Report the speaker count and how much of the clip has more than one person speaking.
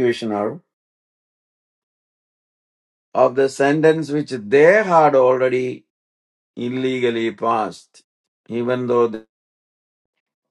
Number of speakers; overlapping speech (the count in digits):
1, no overlap